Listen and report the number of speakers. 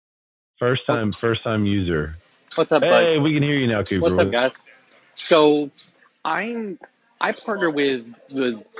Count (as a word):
two